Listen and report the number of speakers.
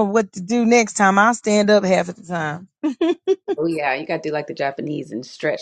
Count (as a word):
two